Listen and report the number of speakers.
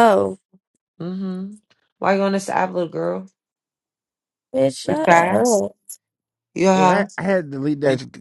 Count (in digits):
3